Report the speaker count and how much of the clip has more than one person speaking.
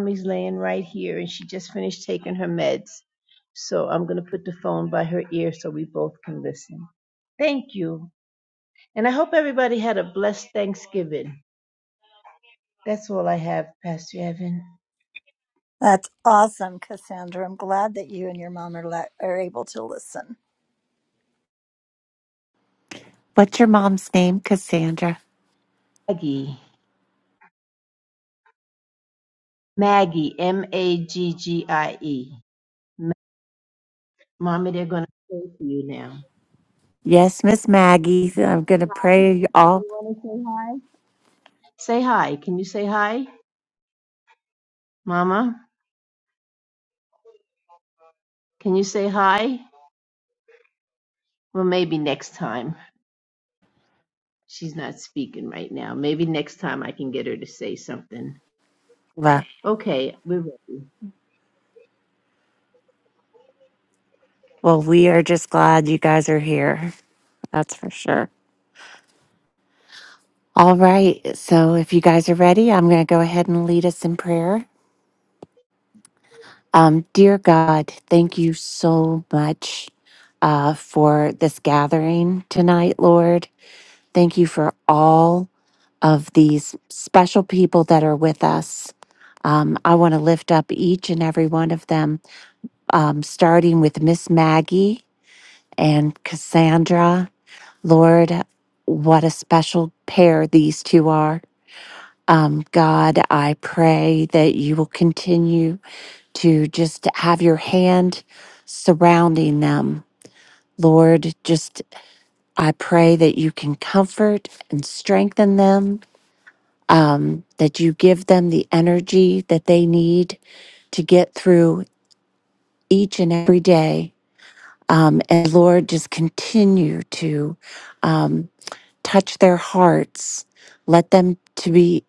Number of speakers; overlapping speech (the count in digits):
3, under 1%